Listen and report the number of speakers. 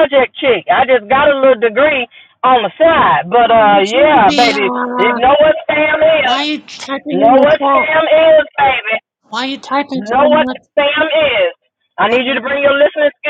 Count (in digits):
2